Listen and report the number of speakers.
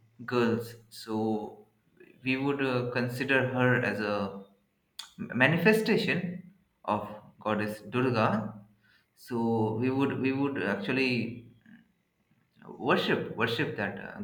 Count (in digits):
1